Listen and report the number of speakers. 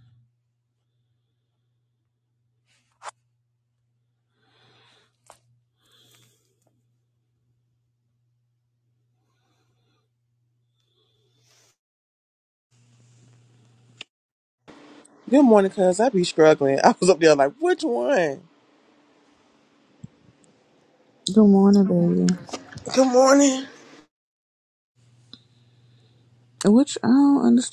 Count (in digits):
2